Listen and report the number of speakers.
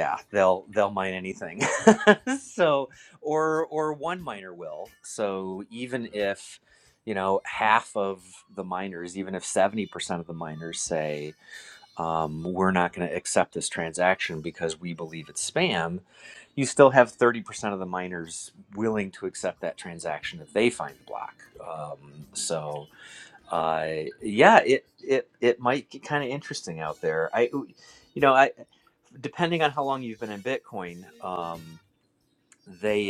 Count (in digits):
1